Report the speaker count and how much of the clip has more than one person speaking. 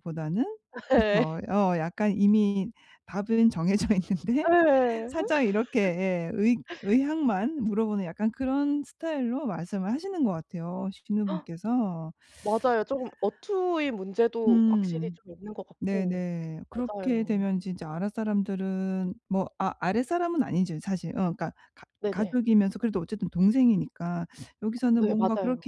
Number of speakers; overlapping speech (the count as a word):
two, about 11%